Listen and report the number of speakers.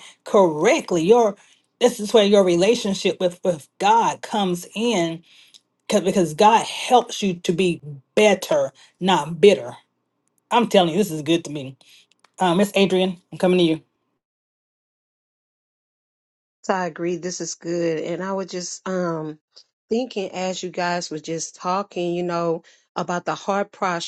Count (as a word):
two